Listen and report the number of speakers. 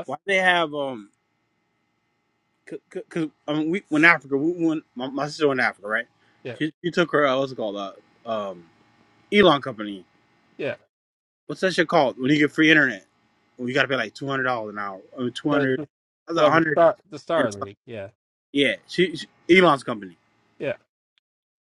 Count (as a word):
two